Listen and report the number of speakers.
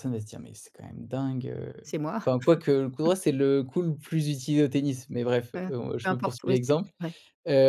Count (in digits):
2